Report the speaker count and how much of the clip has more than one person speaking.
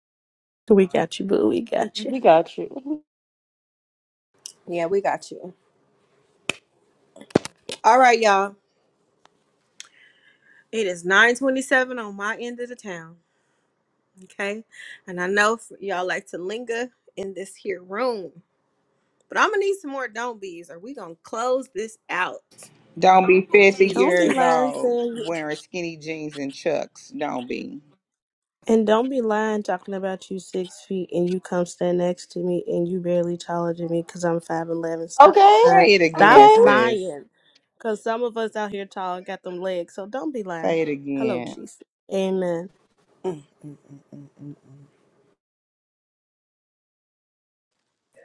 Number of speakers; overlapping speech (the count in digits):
4, about 8%